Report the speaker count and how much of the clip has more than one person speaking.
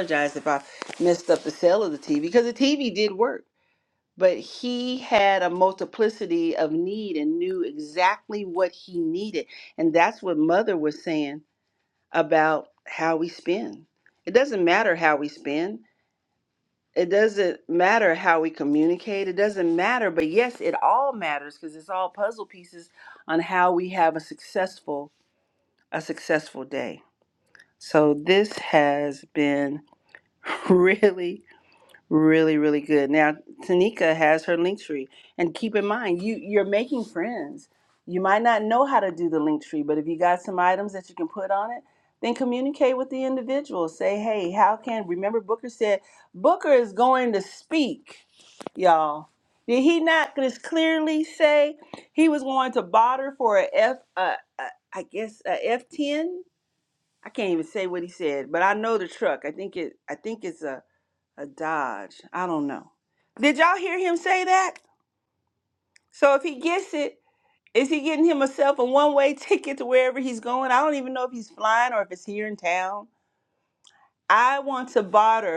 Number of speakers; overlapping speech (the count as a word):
one, no overlap